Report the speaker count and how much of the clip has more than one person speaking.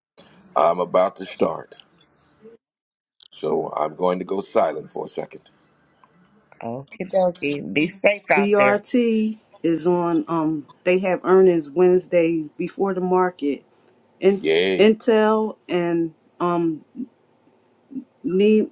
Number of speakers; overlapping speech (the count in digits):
3, about 3%